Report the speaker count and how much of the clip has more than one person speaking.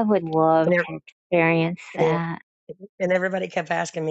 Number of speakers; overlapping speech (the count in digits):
2, about 11%